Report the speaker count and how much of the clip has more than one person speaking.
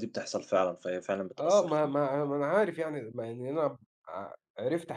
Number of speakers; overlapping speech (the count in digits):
2, about 10%